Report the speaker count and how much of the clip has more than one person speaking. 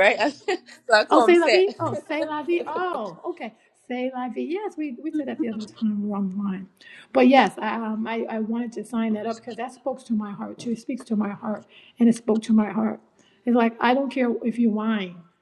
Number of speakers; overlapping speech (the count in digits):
2, about 4%